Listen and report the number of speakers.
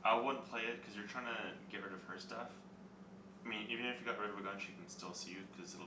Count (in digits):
1